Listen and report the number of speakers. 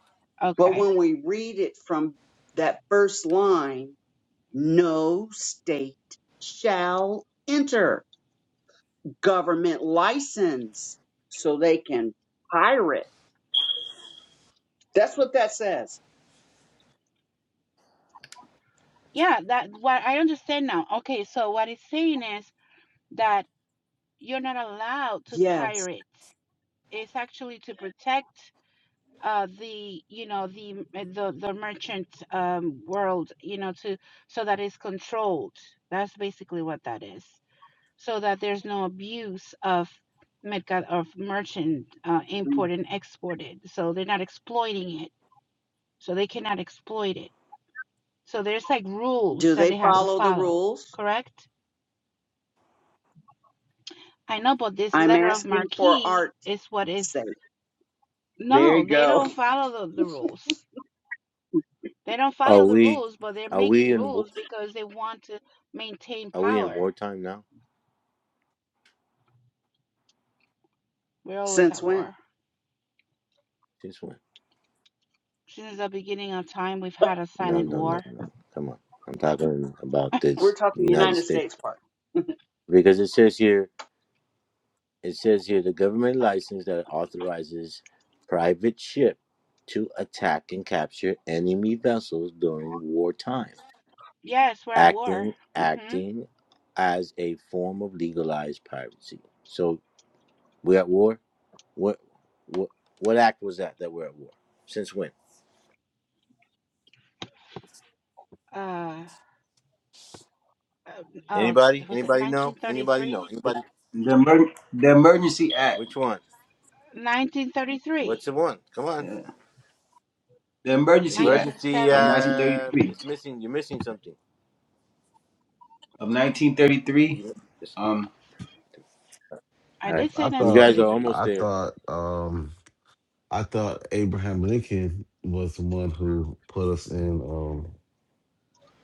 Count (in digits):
5